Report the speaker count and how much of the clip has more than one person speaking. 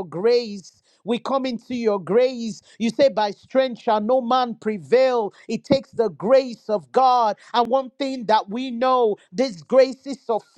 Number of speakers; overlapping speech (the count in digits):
1, no overlap